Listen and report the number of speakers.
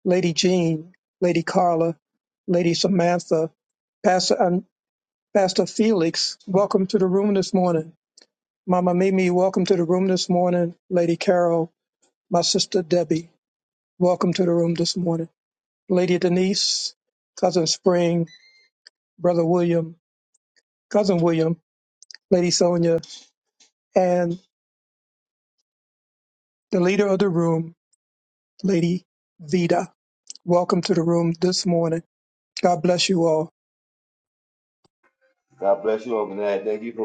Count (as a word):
two